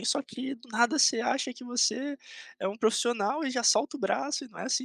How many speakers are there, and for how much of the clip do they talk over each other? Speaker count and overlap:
1, no overlap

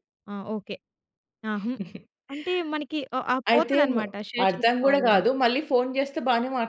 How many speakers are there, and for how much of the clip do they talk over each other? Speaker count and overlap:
2, about 20%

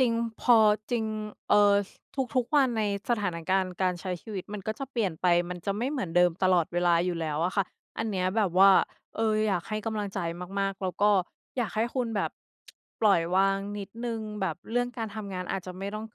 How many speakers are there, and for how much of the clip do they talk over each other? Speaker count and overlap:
1, no overlap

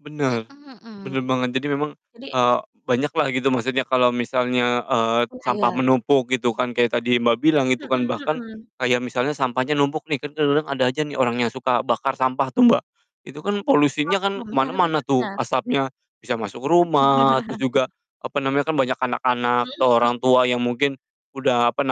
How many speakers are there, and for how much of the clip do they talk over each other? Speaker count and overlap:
2, about 16%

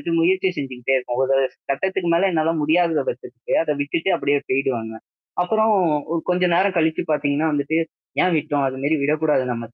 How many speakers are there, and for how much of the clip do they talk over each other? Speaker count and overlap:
1, no overlap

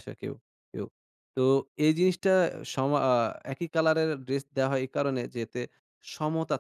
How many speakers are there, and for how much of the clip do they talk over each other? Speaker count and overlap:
1, no overlap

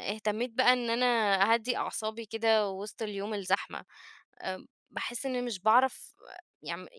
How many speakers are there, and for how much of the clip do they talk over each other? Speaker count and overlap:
1, no overlap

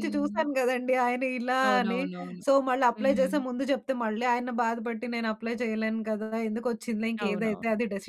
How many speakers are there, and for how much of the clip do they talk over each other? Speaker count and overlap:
2, about 22%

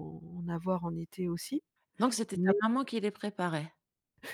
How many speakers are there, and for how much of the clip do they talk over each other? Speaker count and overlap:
2, about 5%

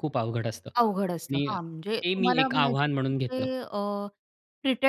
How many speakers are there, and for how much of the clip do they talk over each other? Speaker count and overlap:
2, about 34%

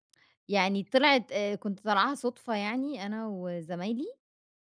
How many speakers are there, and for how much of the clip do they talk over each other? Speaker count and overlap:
1, no overlap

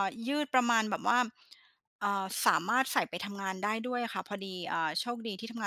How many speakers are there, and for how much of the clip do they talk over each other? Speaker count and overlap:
1, no overlap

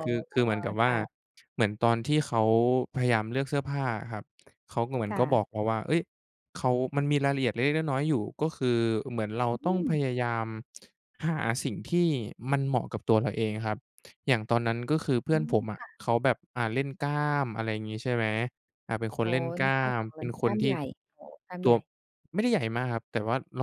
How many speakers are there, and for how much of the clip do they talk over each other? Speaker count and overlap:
2, about 13%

